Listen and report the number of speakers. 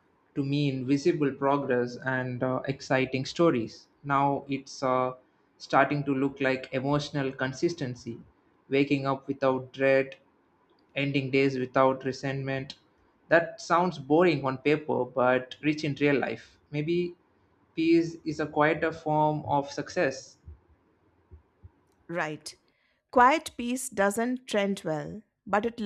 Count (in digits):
2